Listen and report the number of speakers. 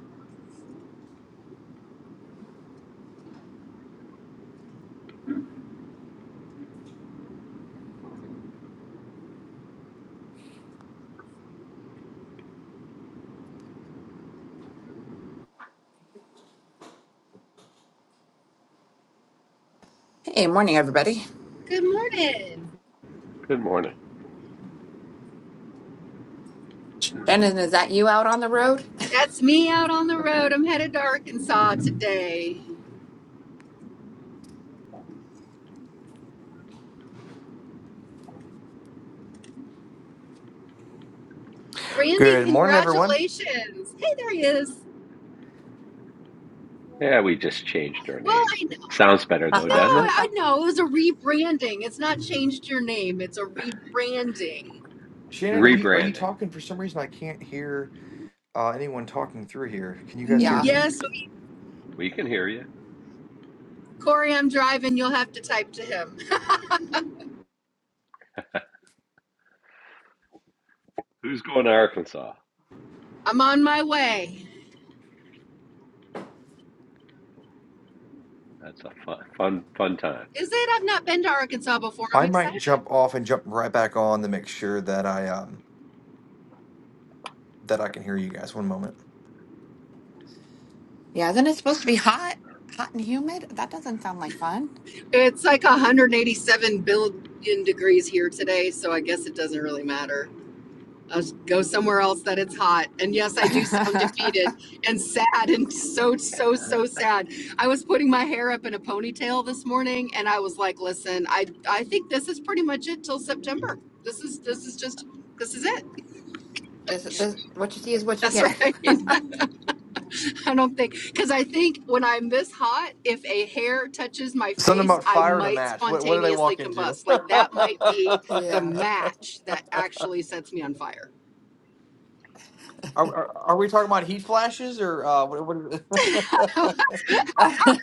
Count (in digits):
4